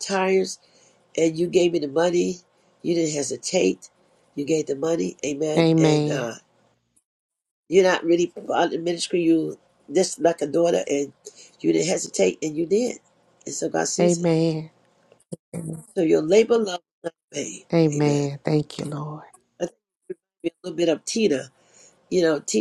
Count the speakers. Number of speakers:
two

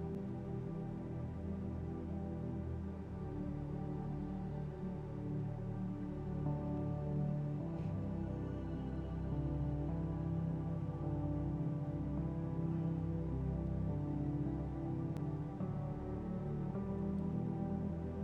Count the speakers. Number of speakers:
zero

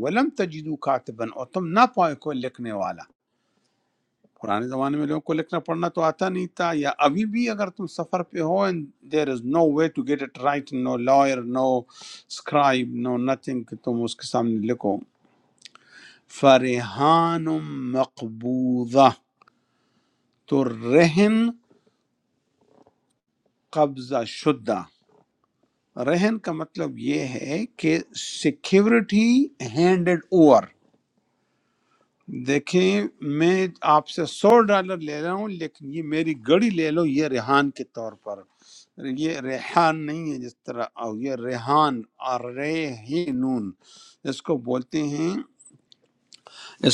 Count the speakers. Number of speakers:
one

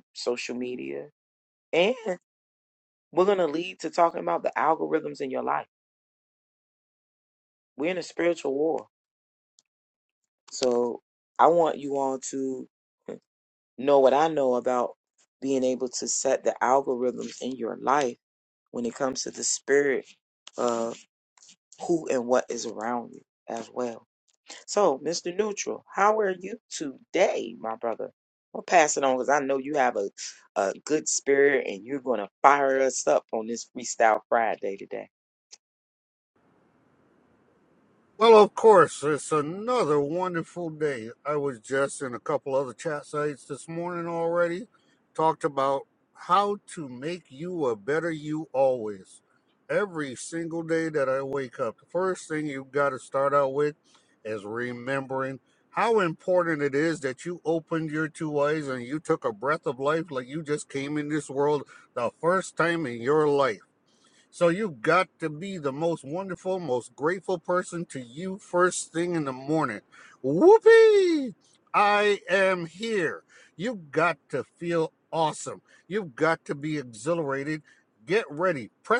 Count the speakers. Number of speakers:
two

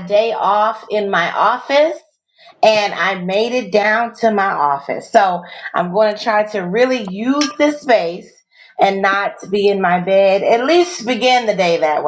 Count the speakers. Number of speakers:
one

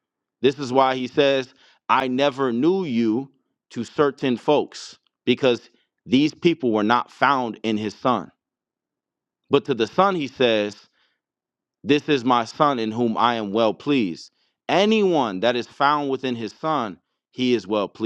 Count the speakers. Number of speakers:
one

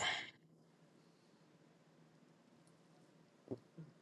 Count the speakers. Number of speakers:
zero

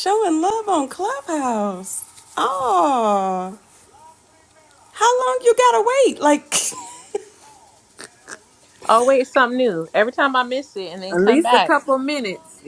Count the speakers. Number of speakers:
three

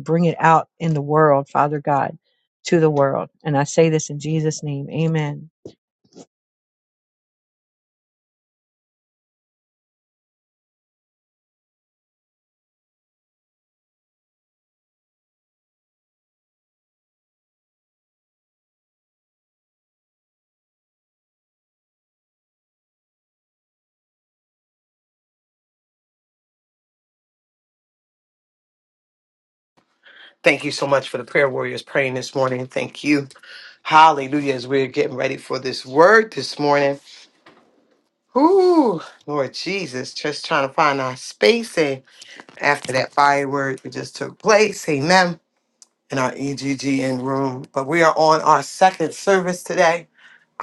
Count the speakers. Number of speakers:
two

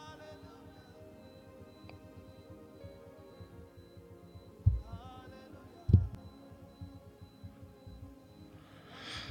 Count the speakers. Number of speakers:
zero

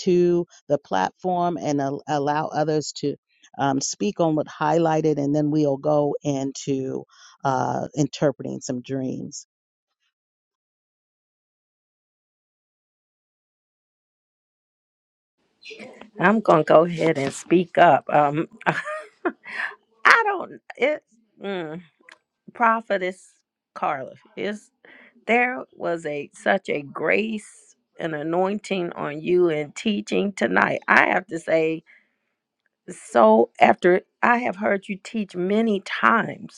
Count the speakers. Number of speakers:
two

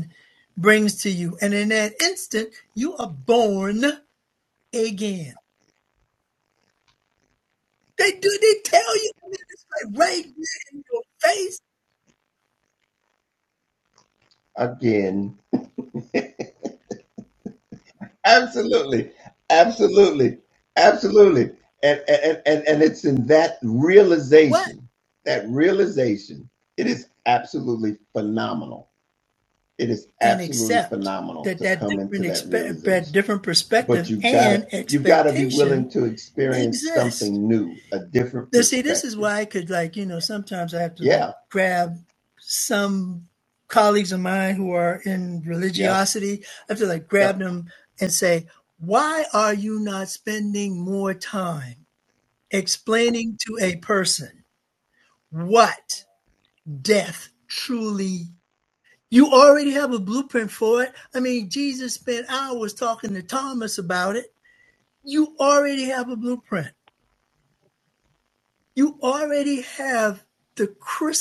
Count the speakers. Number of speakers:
two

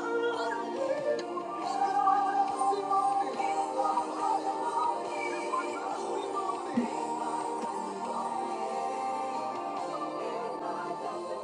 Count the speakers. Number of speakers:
zero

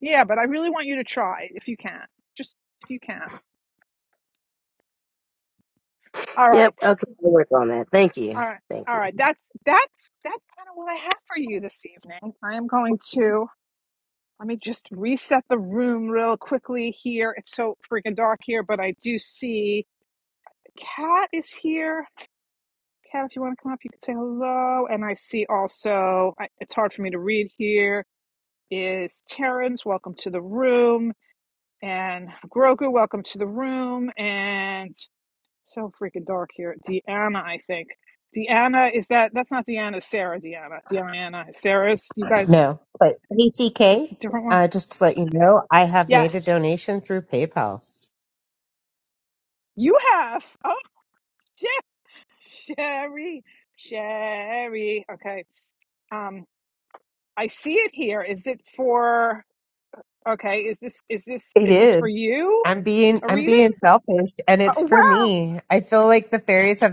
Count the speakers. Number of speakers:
three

